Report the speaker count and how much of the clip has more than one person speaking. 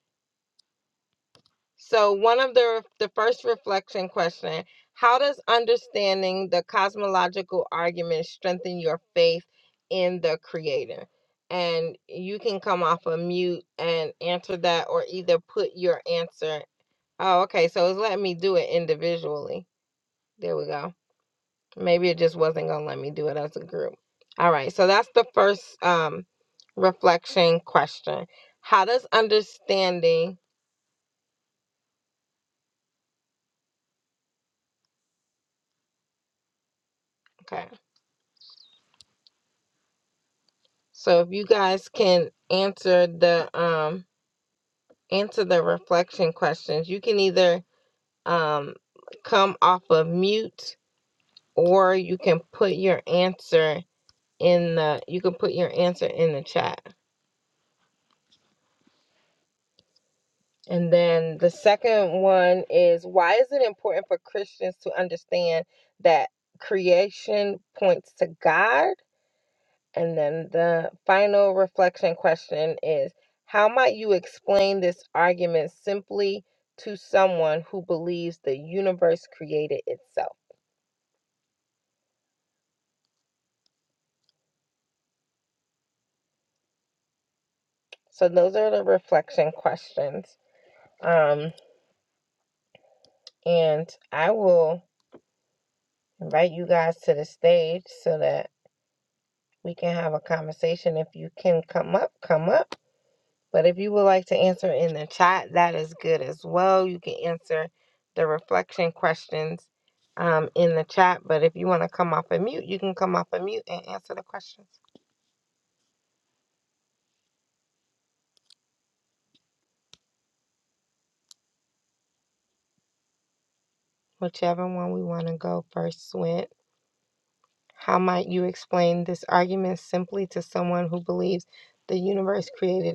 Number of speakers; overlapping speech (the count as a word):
one, no overlap